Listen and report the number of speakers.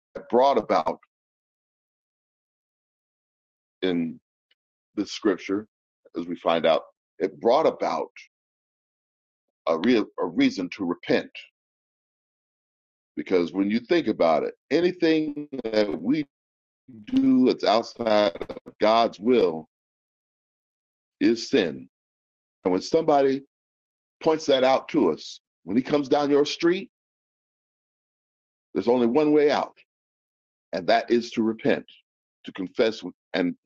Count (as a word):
one